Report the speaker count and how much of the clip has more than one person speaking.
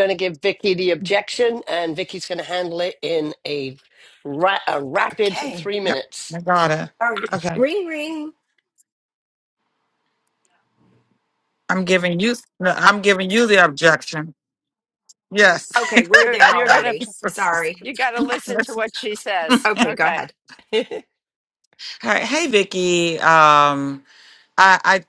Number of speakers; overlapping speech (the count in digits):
4, about 9%